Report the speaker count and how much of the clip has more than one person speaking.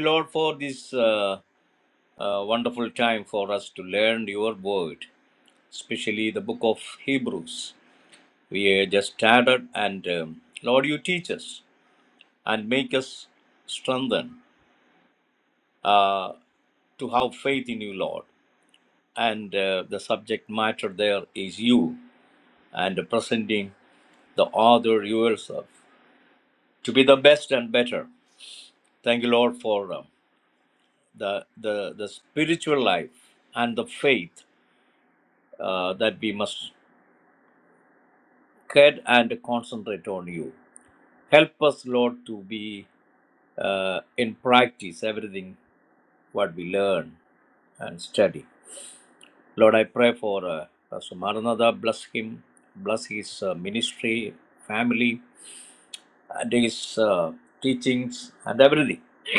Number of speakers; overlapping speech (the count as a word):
one, no overlap